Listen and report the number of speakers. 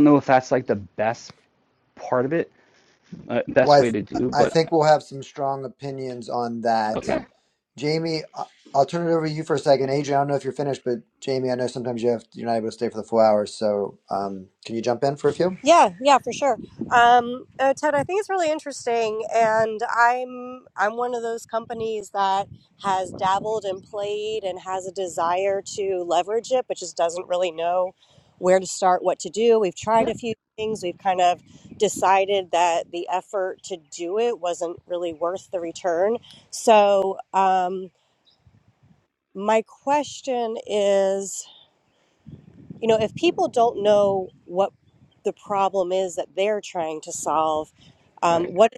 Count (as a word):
three